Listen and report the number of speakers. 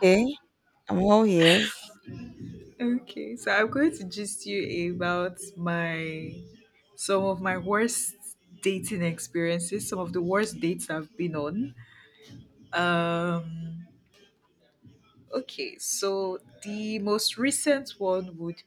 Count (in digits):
2